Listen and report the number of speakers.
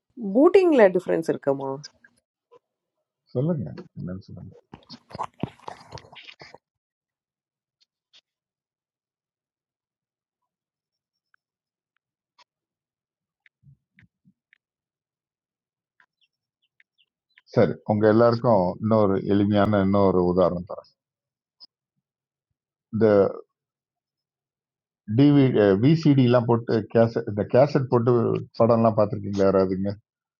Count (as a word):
two